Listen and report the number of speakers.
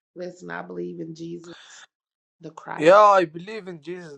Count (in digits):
2